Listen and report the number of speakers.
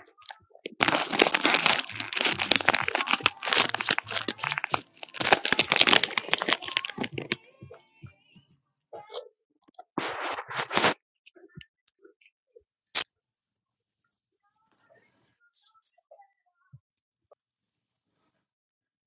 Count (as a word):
zero